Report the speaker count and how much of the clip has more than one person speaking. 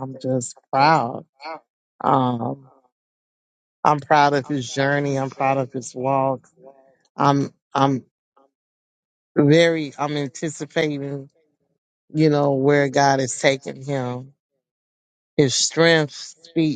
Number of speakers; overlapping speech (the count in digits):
1, no overlap